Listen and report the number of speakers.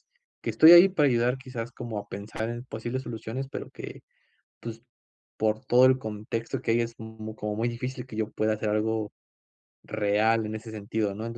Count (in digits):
1